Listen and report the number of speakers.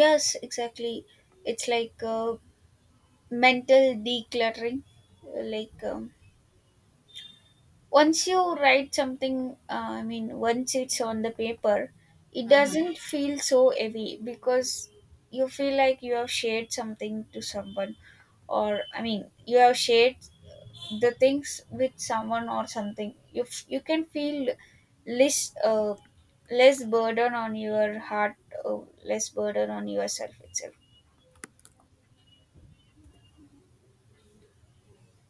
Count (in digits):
1